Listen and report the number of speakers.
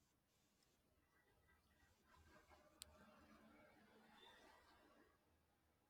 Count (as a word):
zero